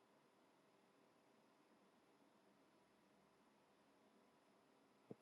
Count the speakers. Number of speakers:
0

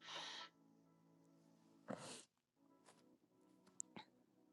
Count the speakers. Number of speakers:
0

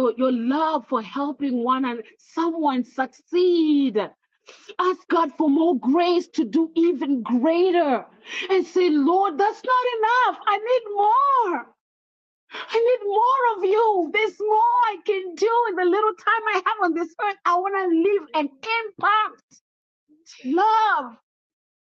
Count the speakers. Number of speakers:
1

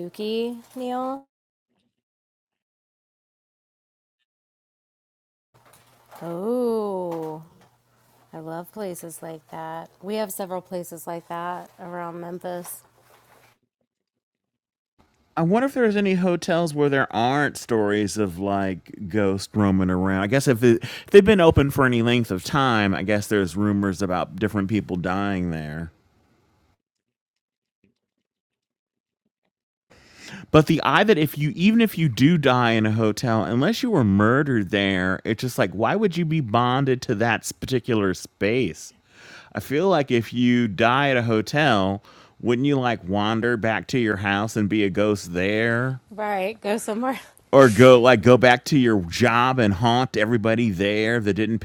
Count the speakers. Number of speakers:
2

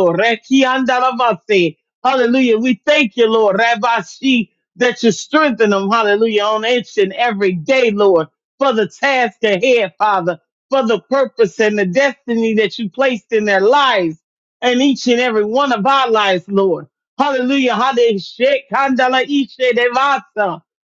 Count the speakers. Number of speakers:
1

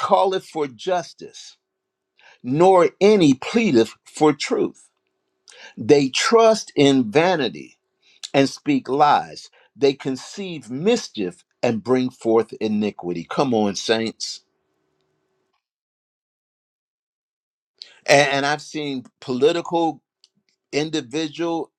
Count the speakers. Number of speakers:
1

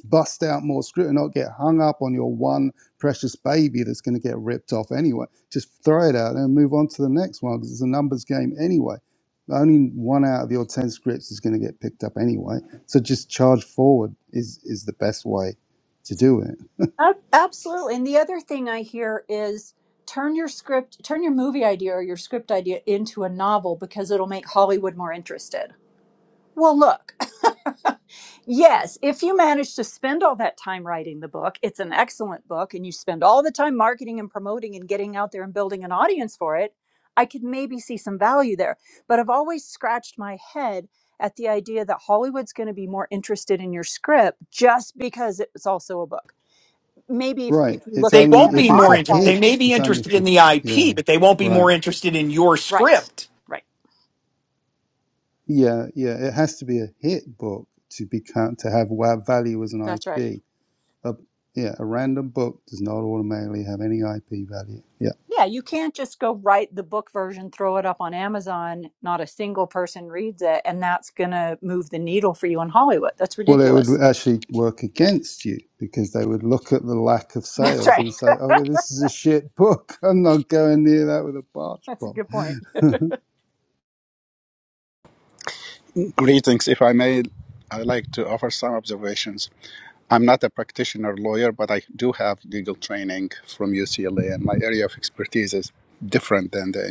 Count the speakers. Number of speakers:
4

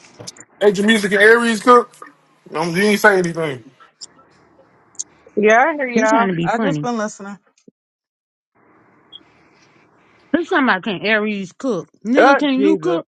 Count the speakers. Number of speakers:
3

